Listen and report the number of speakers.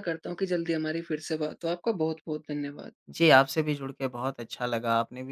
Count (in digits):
2